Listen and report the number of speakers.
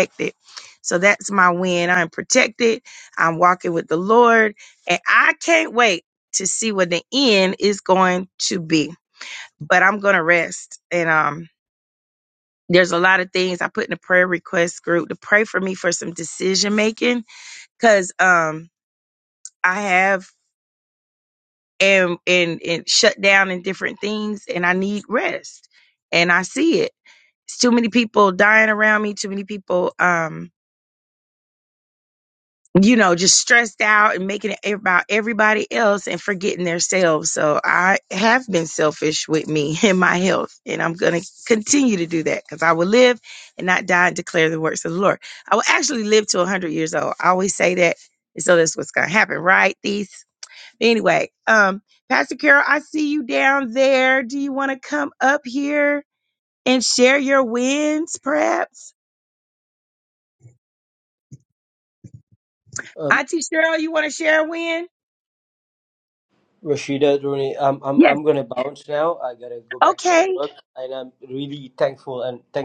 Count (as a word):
two